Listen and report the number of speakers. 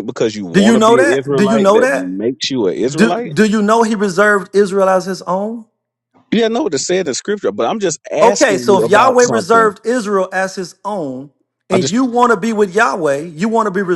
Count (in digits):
2